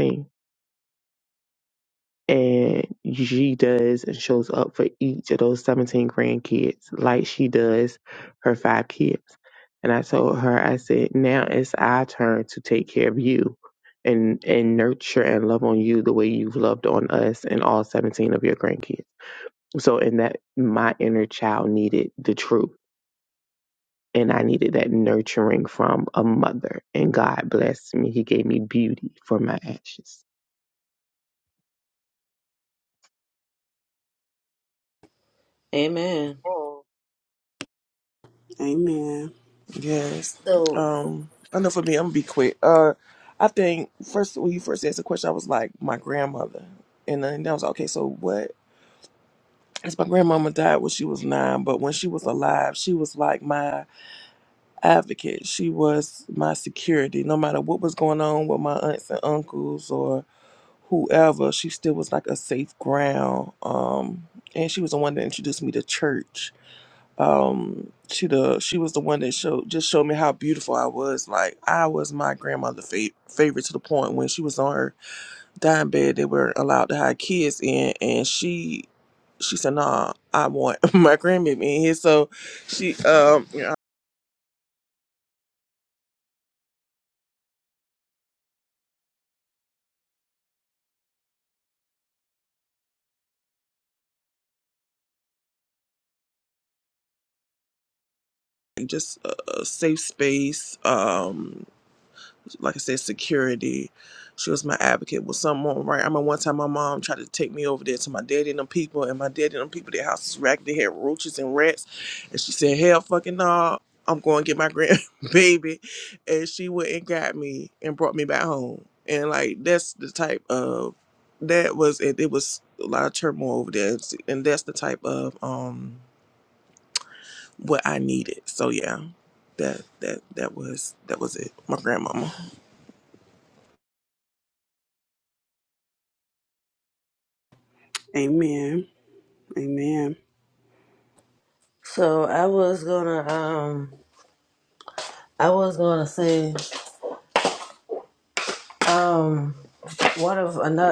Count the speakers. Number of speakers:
4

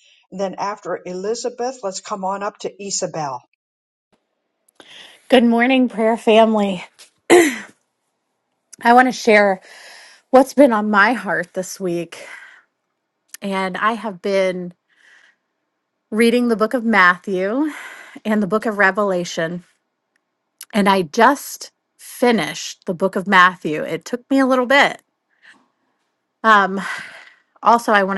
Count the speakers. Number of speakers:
2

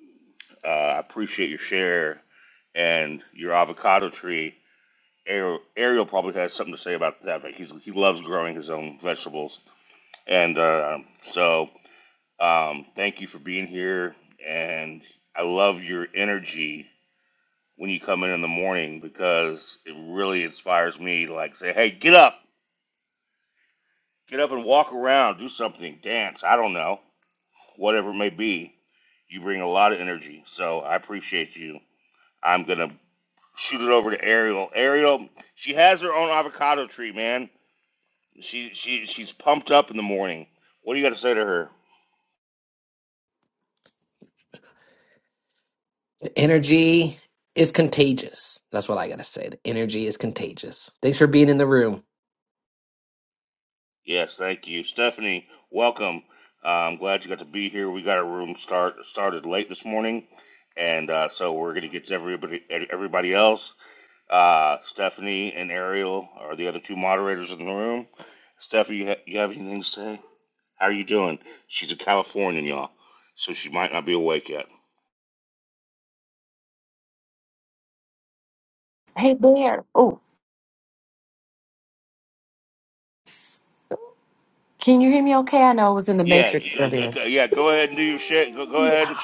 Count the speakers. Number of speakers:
3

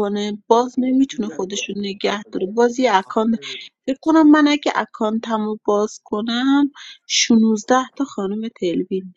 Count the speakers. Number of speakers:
1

